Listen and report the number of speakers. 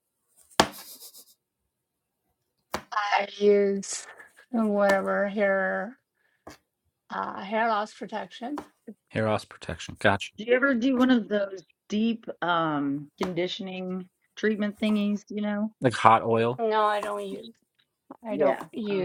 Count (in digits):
3